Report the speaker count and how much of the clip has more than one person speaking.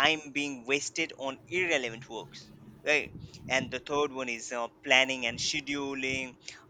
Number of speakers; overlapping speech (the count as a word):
one, no overlap